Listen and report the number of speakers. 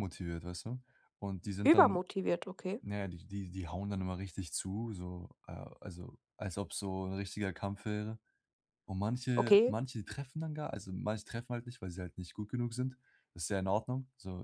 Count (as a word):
two